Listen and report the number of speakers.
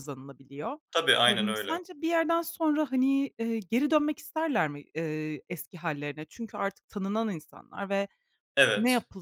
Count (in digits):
2